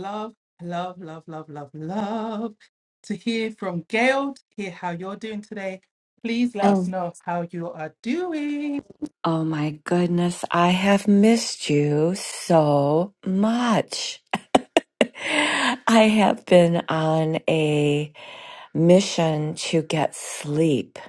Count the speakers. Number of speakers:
two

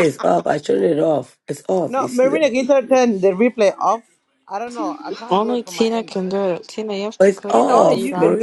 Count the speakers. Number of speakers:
three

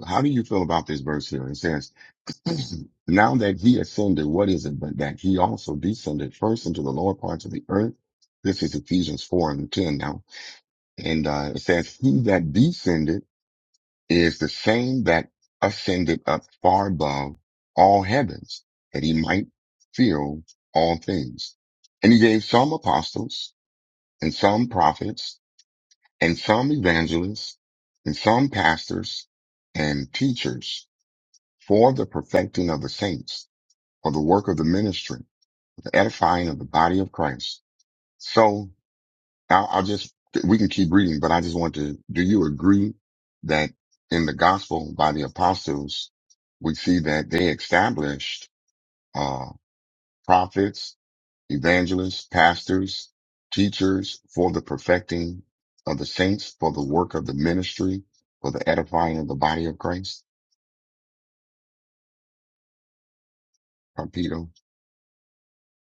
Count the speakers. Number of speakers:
one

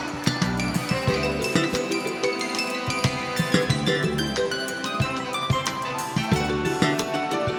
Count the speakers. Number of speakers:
zero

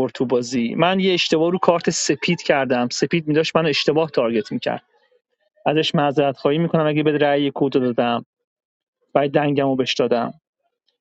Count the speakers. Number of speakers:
one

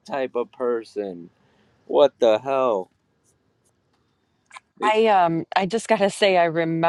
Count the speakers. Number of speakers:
two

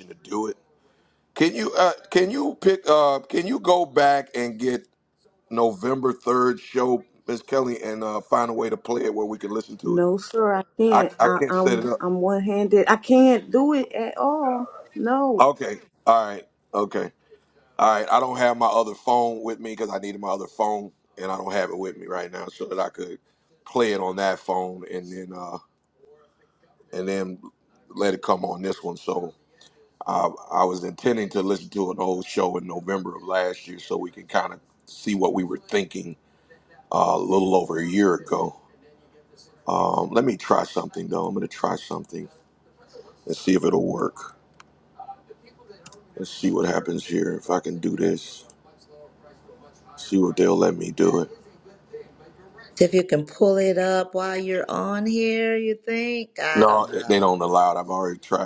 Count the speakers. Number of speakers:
three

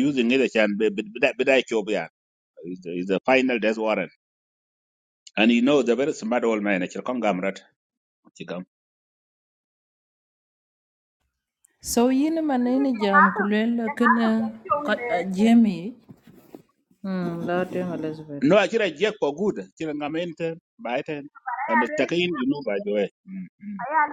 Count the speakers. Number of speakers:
three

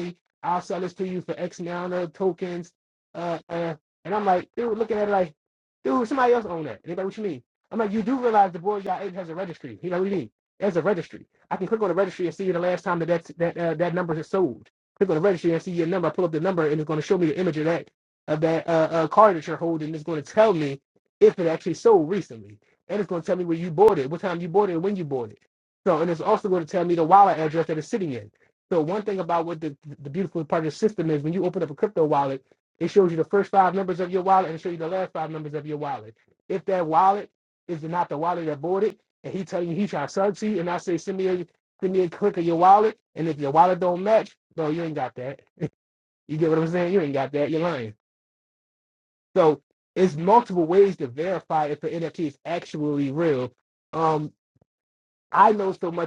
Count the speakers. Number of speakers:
one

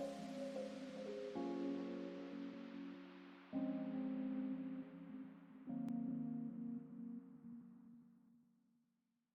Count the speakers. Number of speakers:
zero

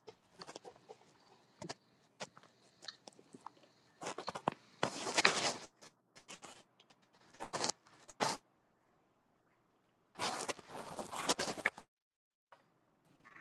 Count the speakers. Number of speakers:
zero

